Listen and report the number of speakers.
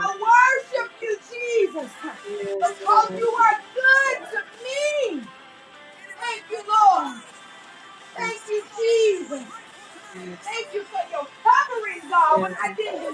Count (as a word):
two